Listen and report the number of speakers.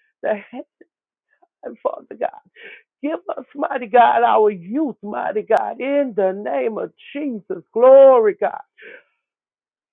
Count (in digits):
1